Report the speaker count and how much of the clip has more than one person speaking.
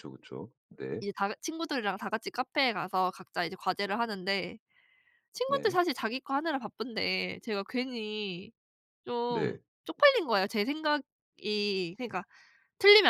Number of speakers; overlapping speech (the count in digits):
2, about 4%